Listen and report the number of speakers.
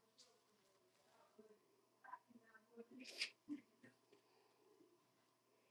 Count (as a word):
zero